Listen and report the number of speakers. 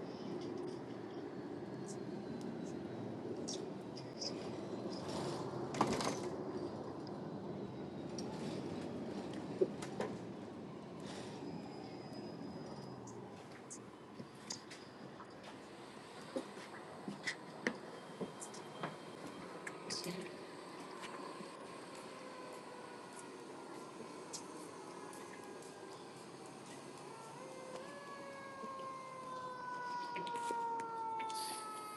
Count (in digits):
0